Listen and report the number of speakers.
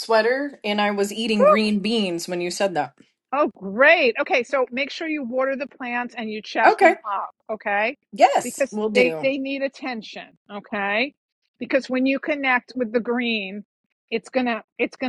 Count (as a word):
two